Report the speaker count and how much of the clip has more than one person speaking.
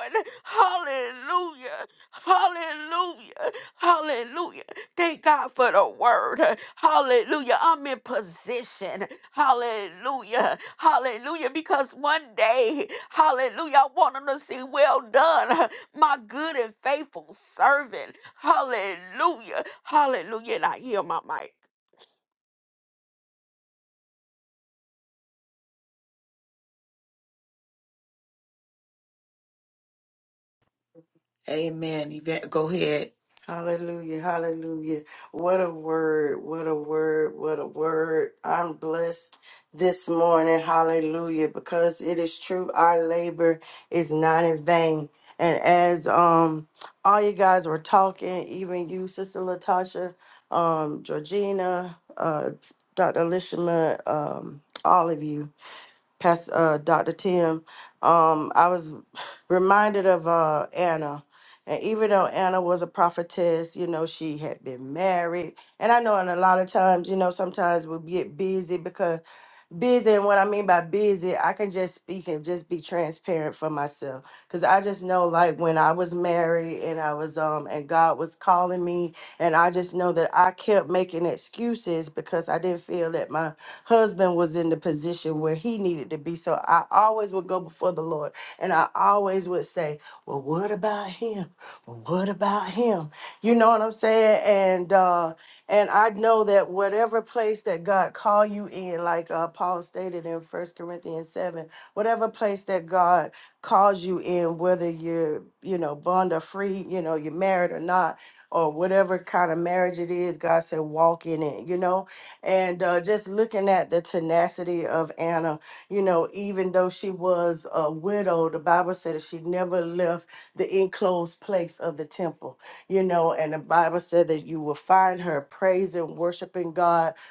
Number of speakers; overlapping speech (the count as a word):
three, no overlap